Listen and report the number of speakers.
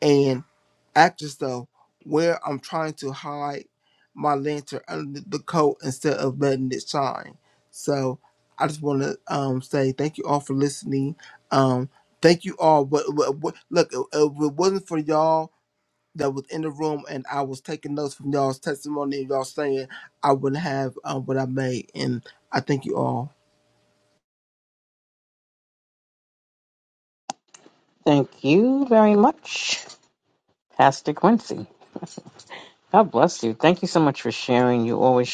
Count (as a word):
two